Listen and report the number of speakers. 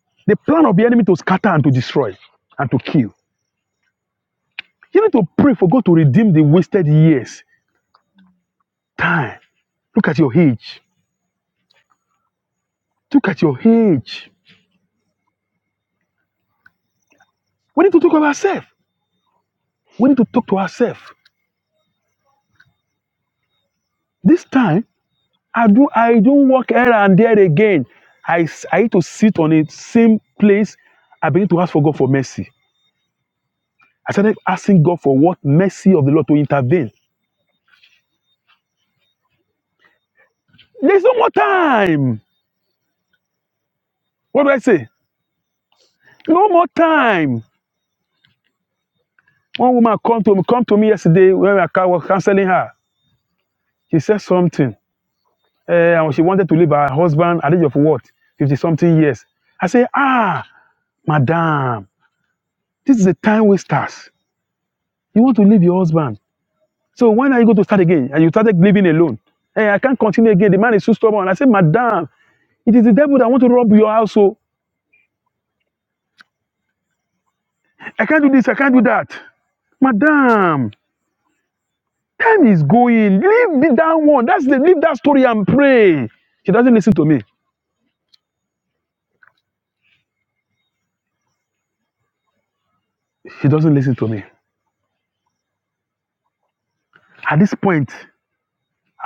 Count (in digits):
1